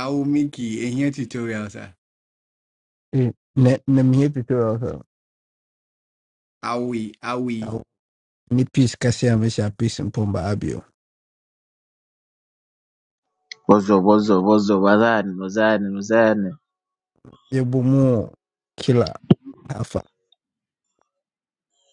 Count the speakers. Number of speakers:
3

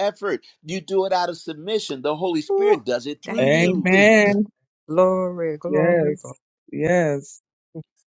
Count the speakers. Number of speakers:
3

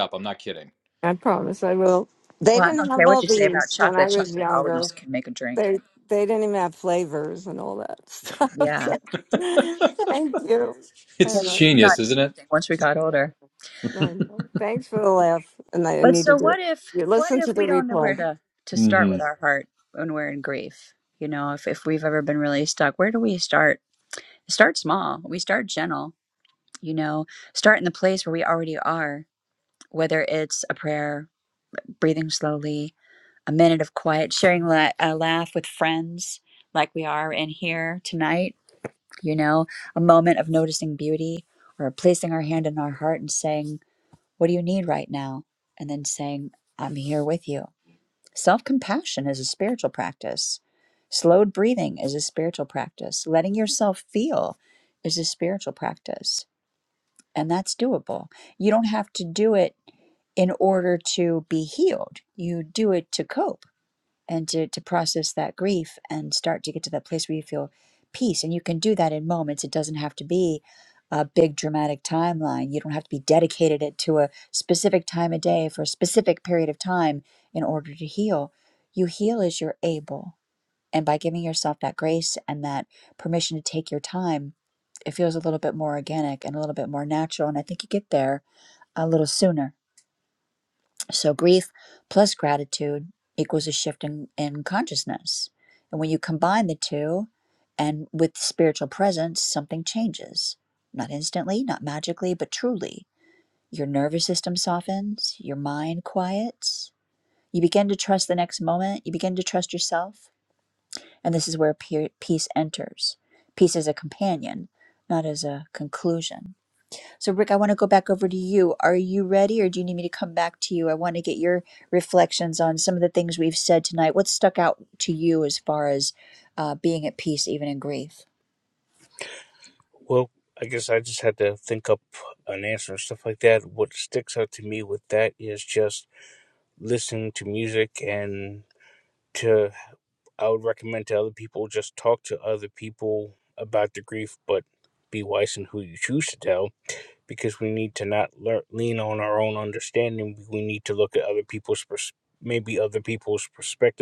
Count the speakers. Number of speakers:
4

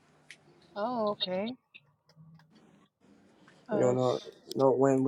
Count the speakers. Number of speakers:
2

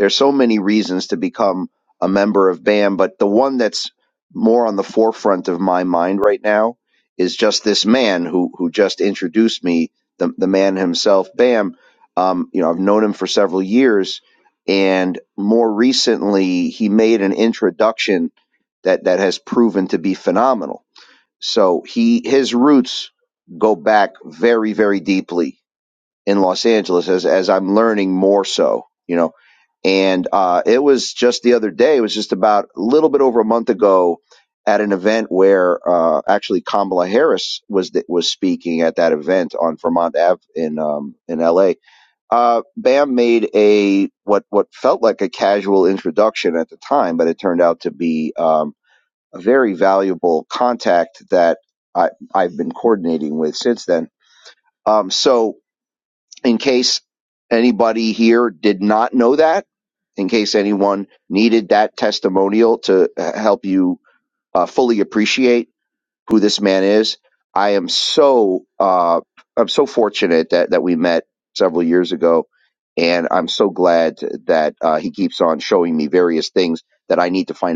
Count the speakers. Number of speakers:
1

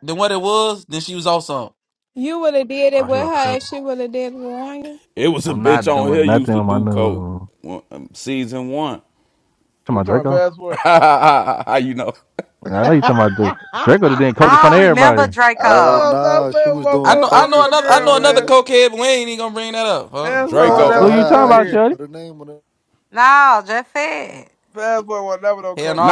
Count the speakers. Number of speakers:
7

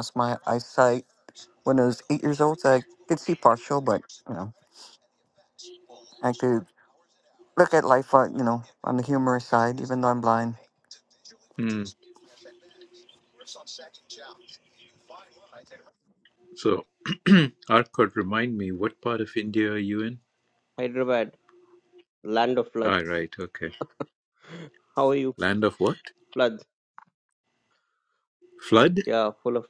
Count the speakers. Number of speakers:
3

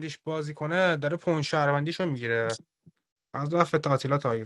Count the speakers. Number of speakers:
1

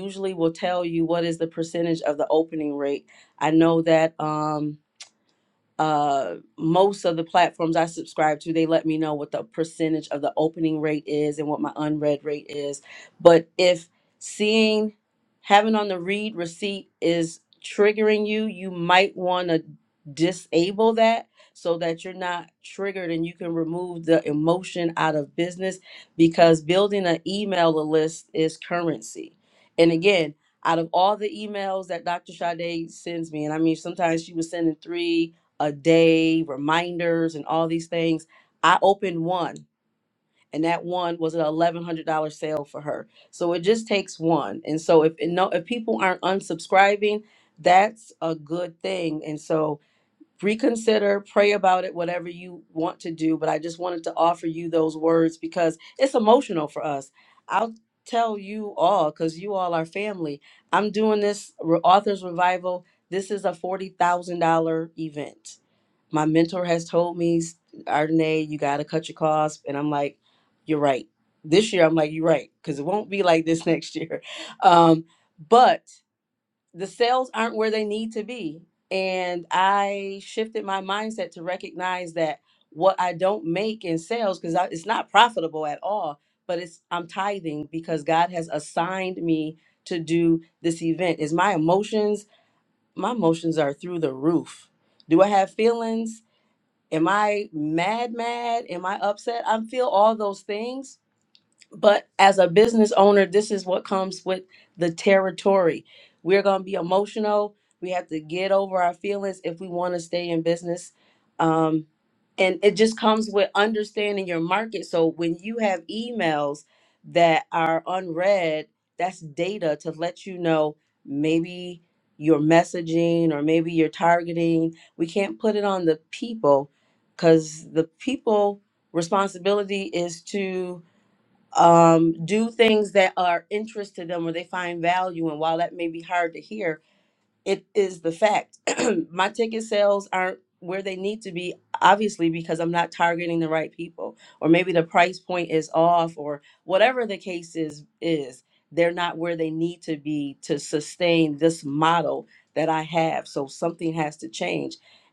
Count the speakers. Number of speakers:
1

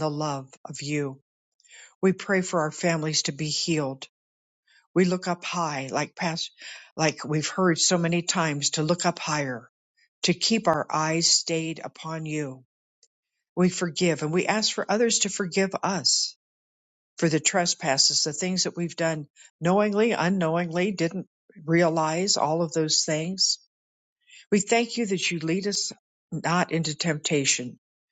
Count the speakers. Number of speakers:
1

